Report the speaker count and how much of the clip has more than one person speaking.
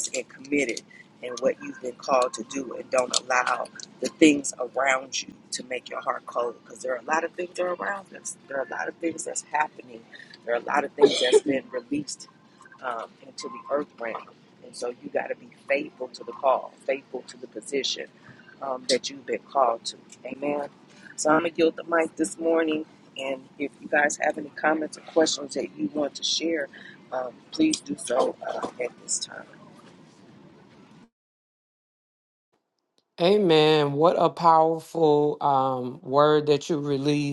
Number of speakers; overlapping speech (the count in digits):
2, no overlap